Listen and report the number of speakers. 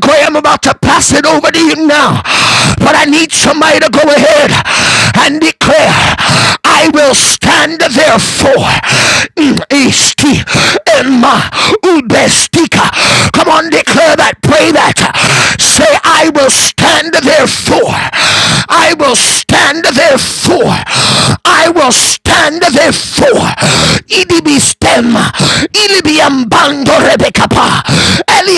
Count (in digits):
1